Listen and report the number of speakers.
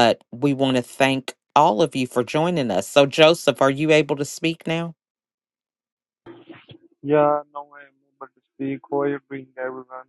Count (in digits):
2